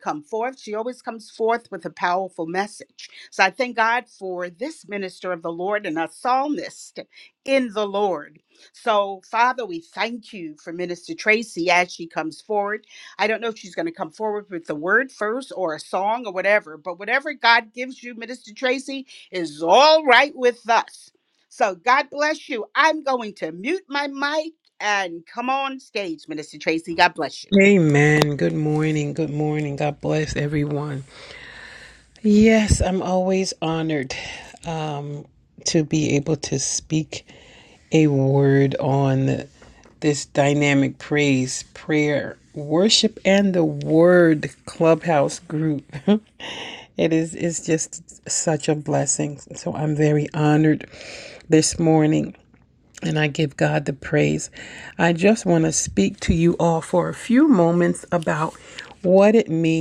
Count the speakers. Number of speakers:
two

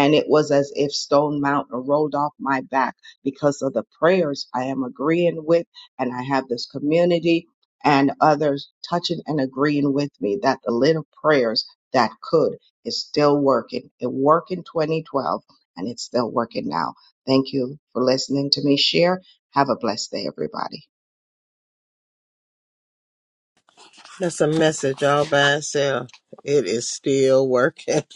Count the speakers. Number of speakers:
two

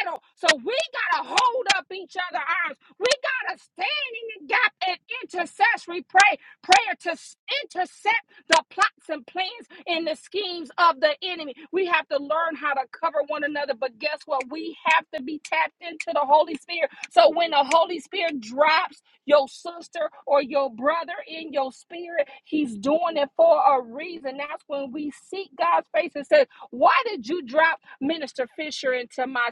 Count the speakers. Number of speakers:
one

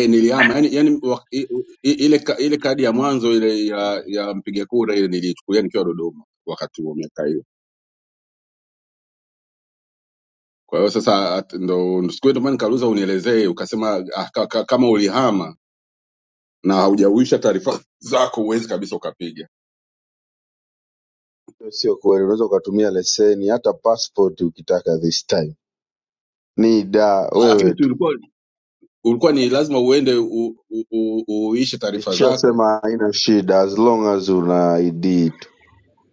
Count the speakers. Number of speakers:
two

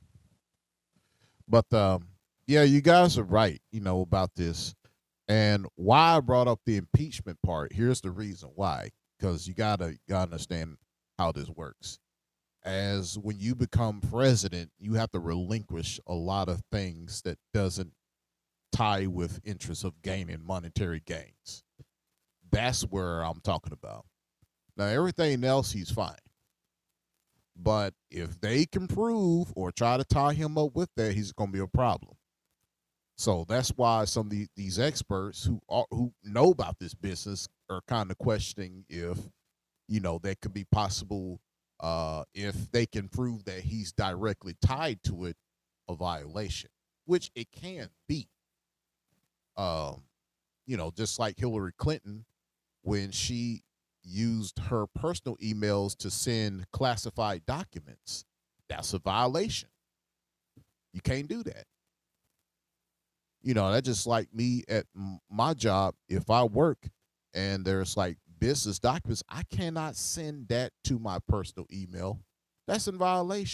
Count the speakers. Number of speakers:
one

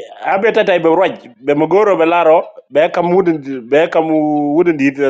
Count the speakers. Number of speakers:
one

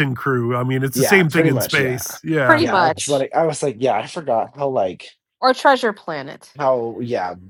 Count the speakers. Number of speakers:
three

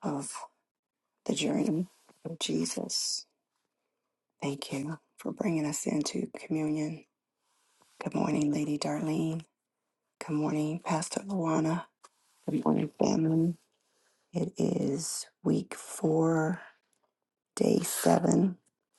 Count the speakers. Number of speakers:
one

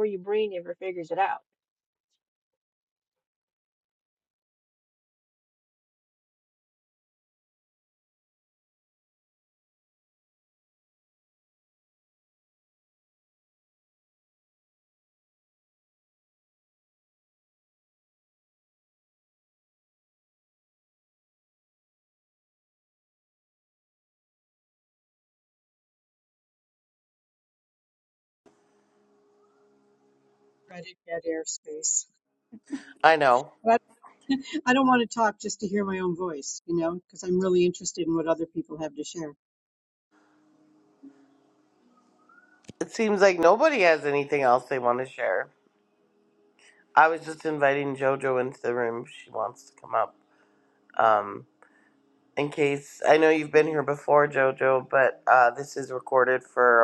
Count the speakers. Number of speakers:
three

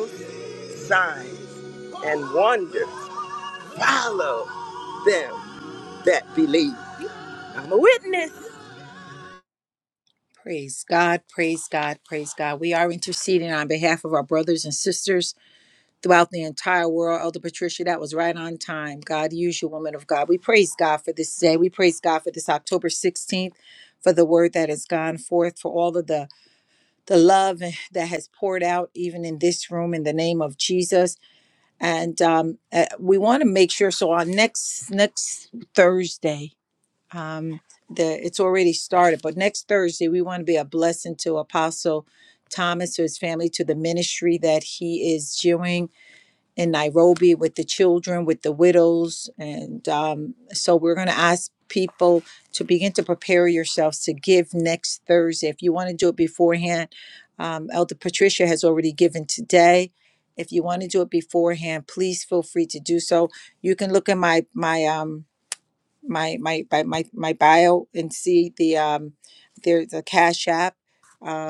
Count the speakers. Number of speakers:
two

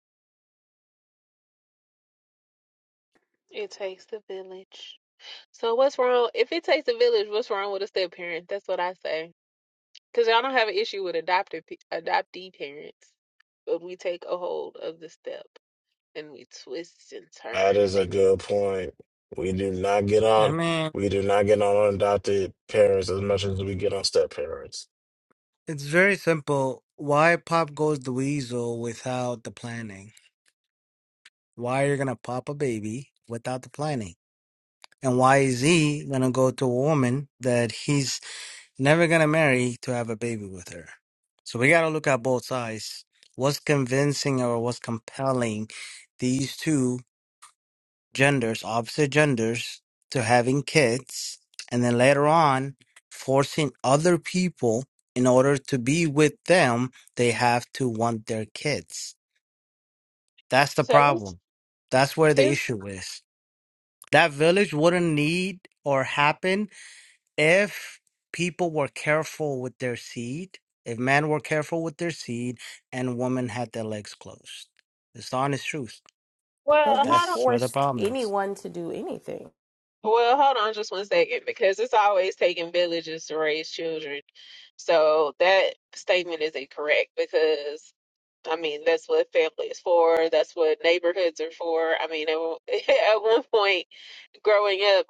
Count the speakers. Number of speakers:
four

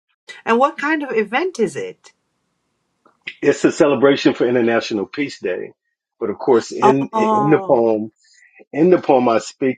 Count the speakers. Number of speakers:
two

